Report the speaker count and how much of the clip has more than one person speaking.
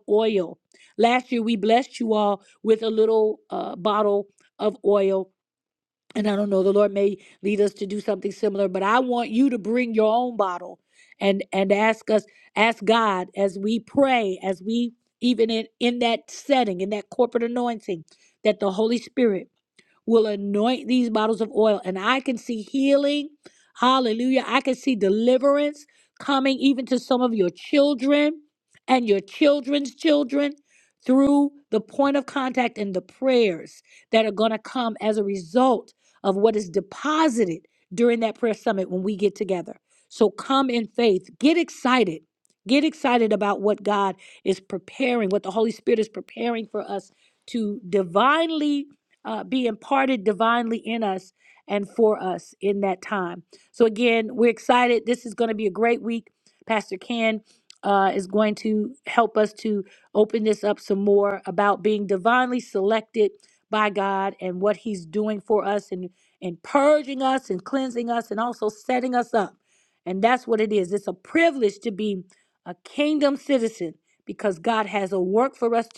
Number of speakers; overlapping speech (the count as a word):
one, no overlap